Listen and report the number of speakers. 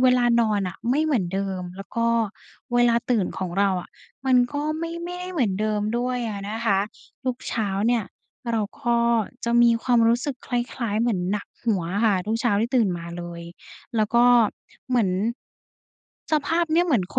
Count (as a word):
one